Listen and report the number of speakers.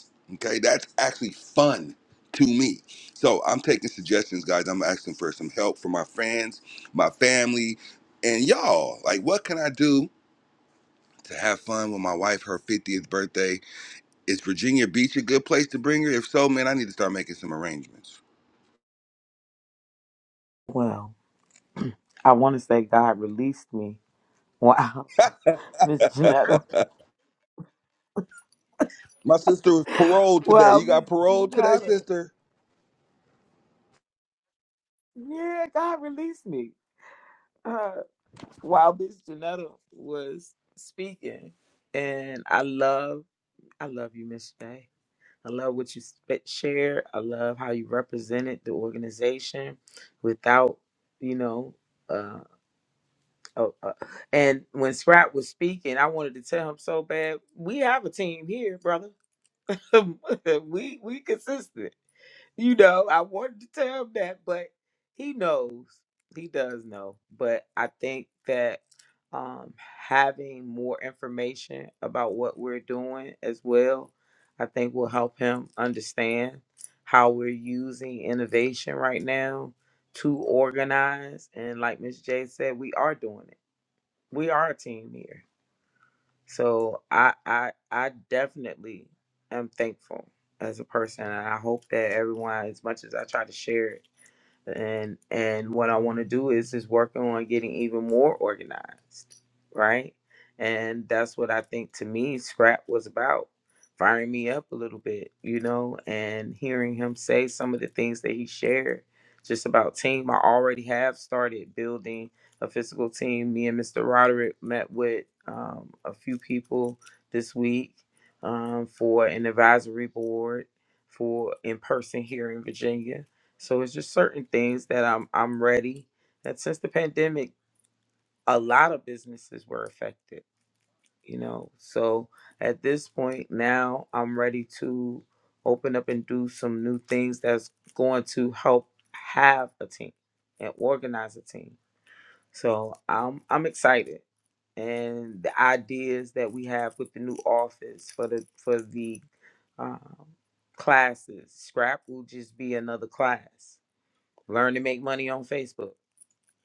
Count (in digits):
2